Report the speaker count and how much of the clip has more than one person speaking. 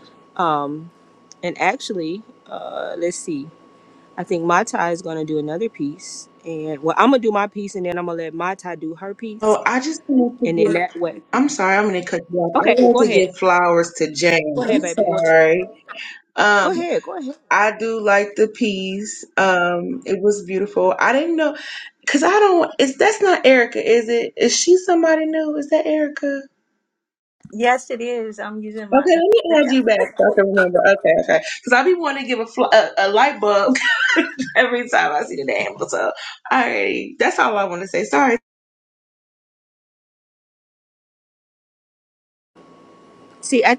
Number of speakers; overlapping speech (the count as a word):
three, about 7%